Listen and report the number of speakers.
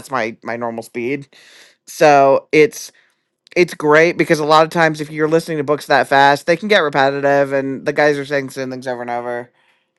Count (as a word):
one